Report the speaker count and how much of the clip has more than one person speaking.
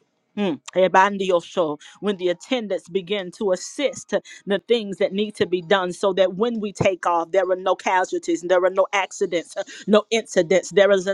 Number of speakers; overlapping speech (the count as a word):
one, no overlap